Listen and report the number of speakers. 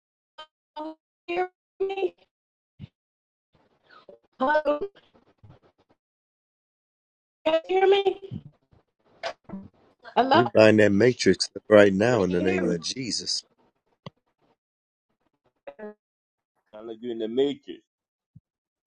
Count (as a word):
three